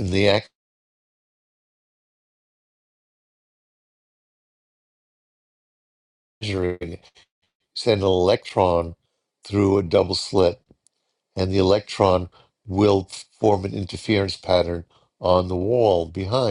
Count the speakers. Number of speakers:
one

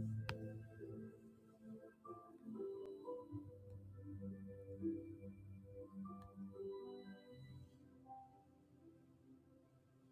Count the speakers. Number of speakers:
zero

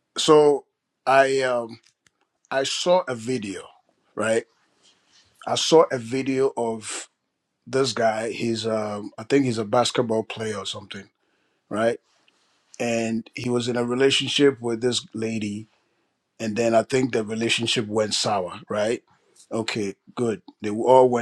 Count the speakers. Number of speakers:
one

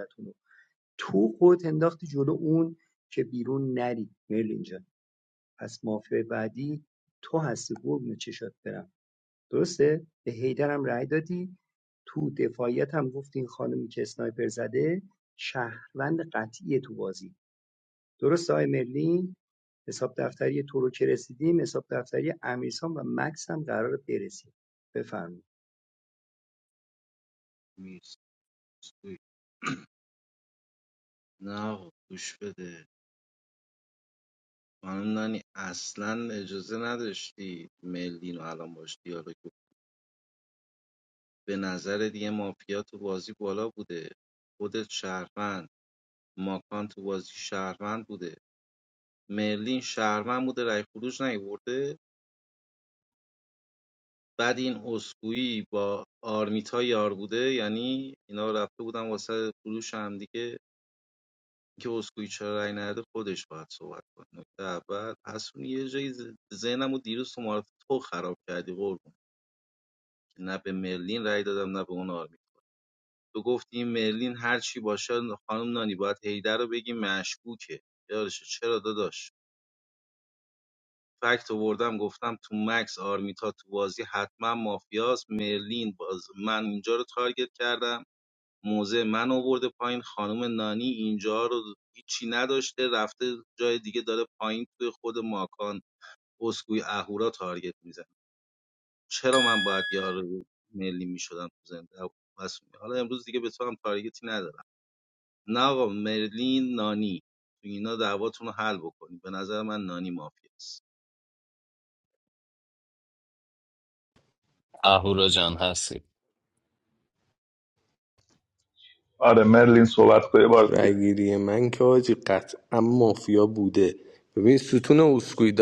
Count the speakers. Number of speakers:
five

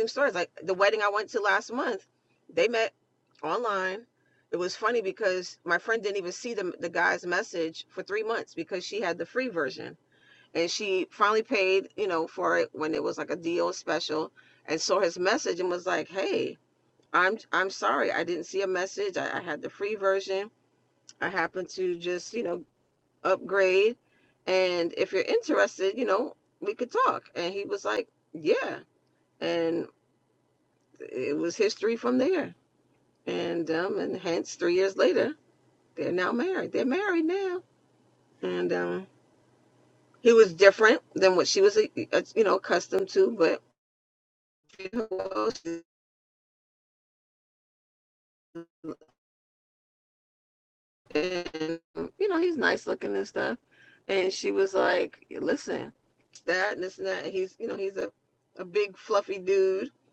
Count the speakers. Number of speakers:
one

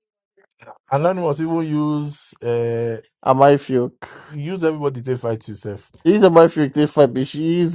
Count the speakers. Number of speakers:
two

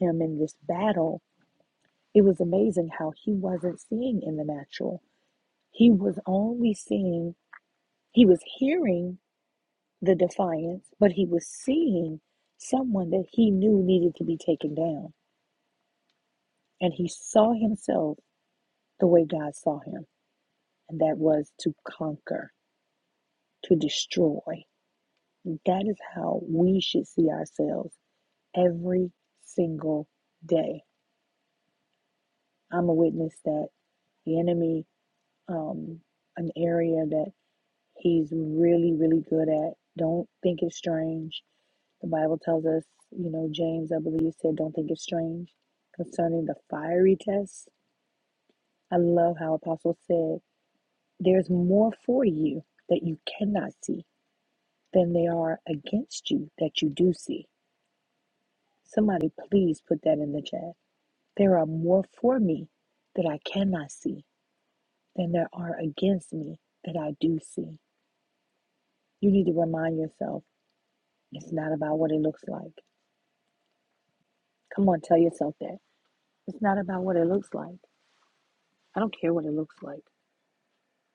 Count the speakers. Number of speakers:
one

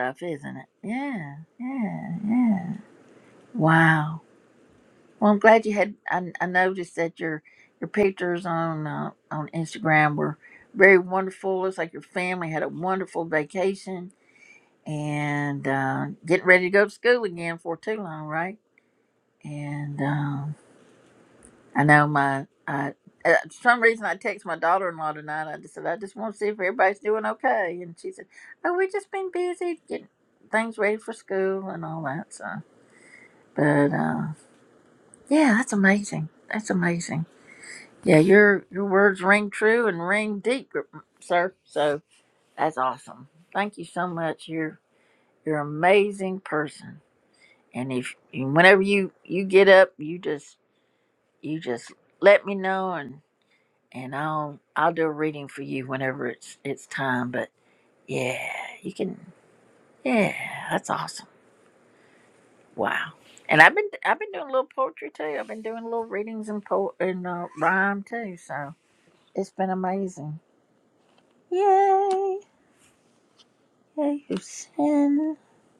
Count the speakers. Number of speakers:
one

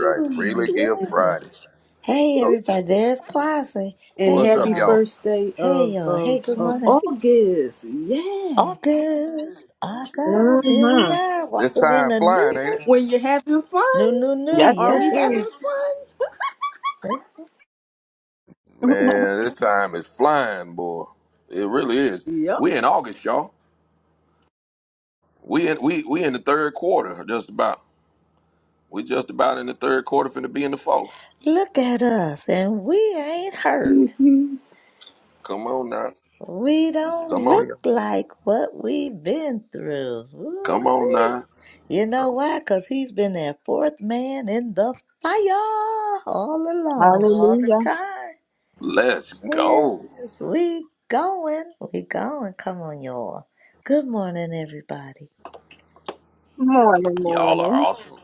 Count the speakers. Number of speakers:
four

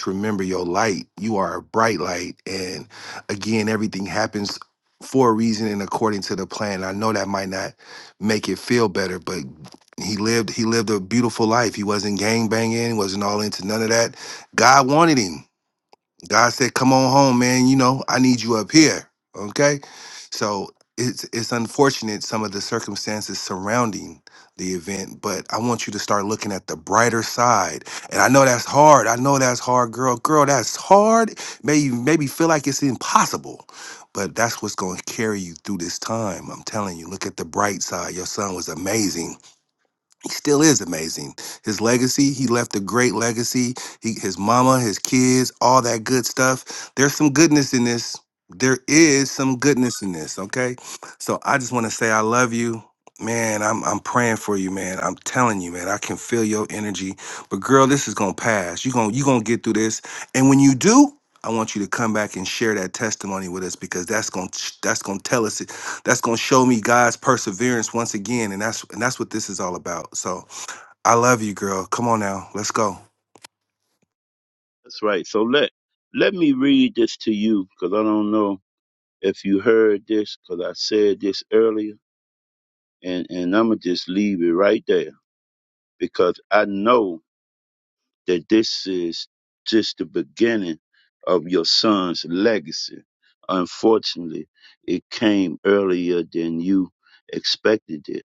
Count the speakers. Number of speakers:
two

